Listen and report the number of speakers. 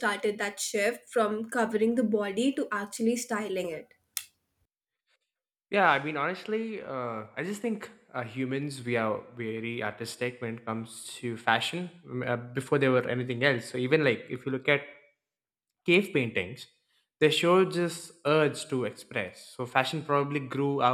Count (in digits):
2